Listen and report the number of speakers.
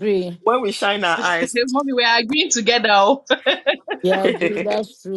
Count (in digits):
3